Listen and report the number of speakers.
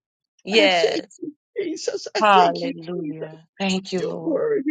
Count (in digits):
2